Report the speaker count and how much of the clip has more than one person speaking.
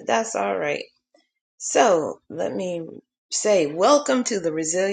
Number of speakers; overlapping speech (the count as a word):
one, no overlap